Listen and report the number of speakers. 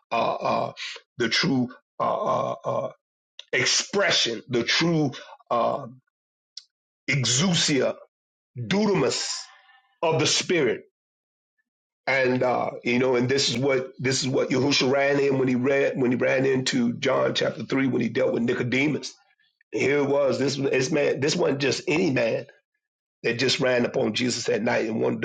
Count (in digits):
1